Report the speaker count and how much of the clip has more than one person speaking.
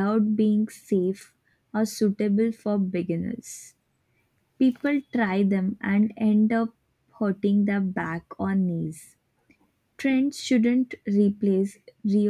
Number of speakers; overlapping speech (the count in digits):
1, no overlap